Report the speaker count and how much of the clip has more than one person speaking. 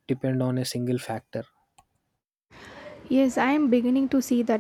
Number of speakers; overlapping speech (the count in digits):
2, no overlap